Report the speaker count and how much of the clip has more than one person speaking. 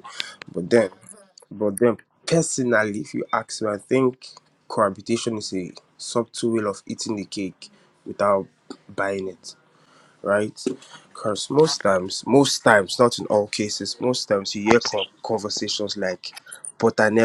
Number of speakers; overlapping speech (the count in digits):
1, no overlap